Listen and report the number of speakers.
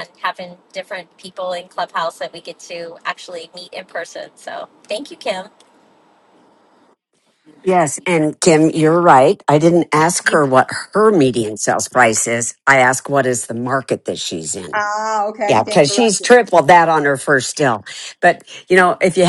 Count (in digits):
3